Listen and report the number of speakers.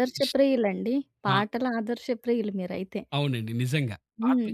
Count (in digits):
2